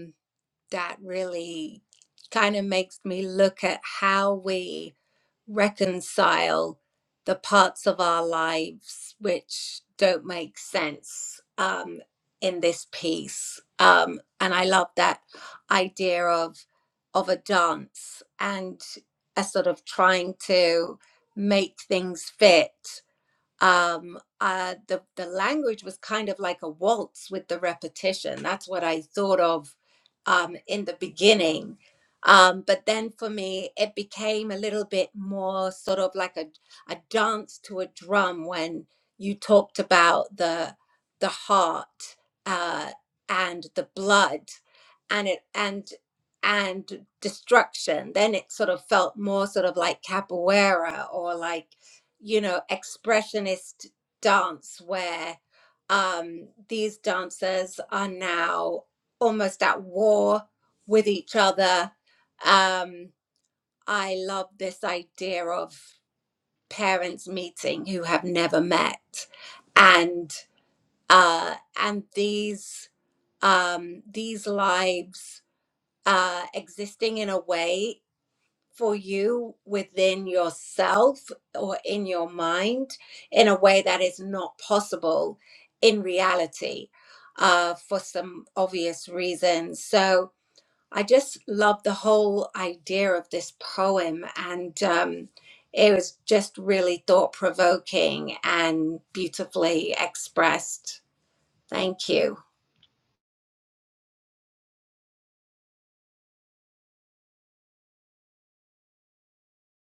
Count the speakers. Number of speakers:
one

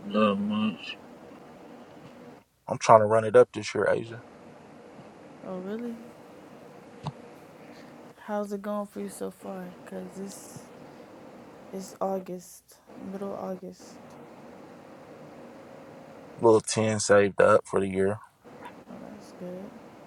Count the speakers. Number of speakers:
three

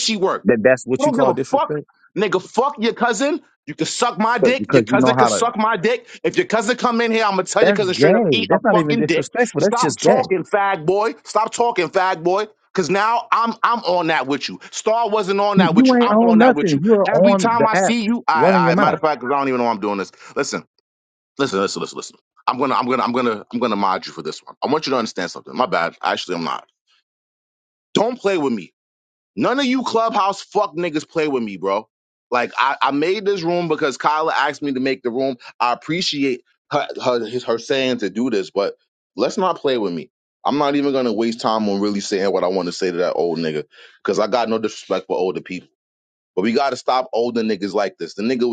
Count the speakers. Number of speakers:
two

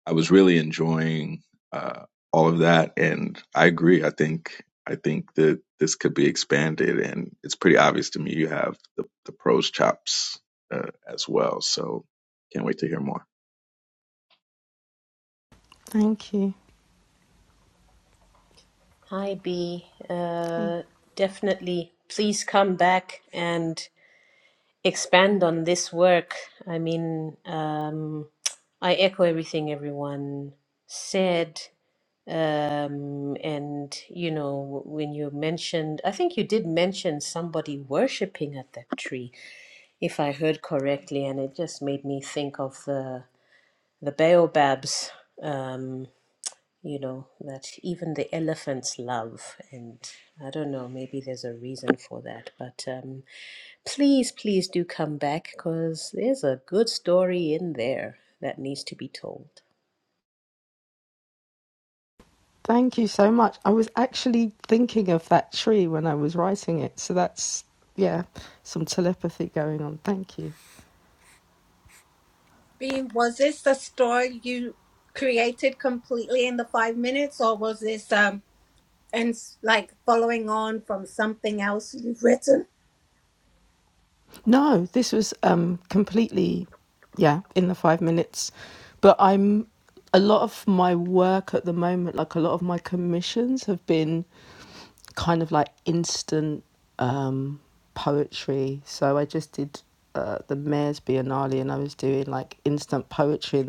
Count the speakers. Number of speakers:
four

